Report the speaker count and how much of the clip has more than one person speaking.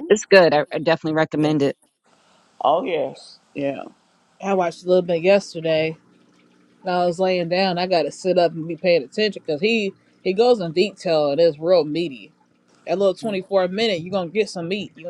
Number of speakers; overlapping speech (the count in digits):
3, about 1%